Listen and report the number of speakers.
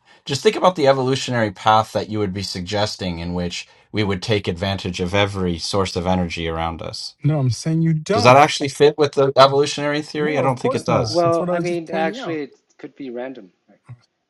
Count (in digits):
3